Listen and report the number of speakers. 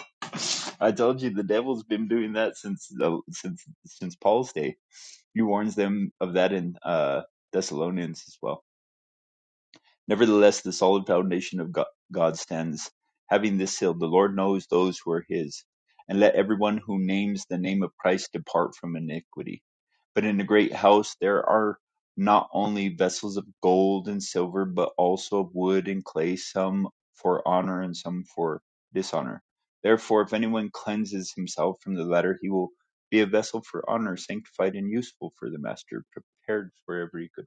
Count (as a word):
one